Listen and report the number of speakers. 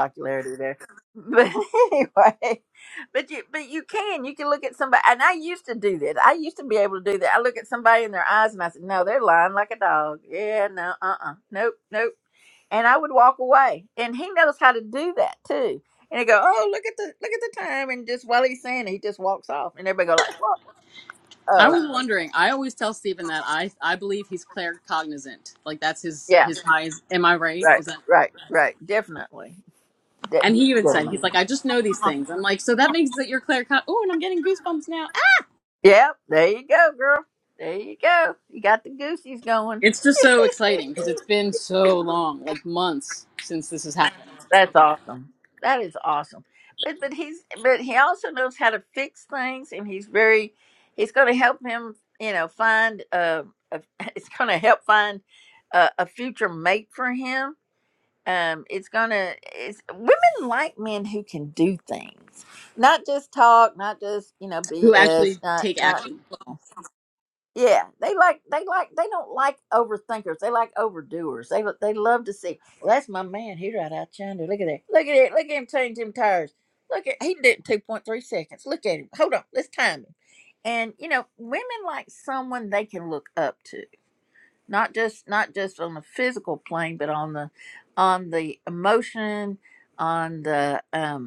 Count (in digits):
2